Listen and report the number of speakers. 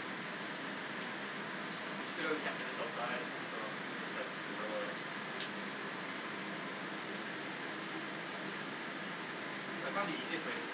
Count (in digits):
1